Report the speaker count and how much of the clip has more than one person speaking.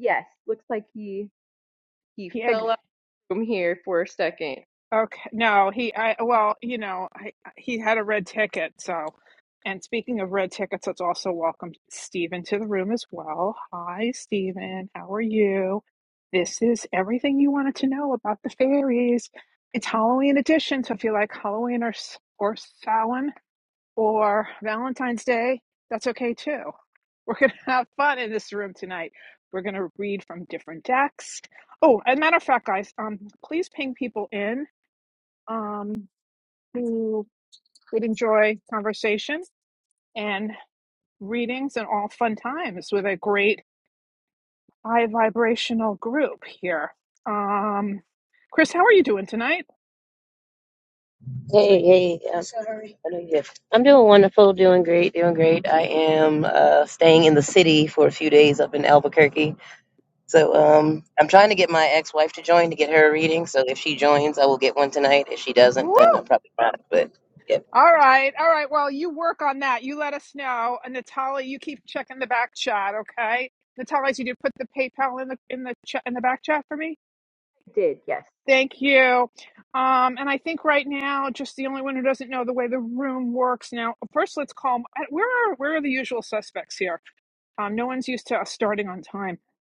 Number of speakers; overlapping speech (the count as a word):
three, under 1%